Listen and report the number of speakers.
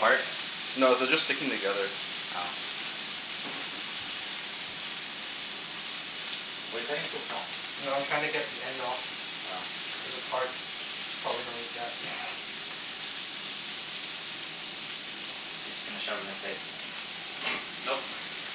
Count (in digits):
3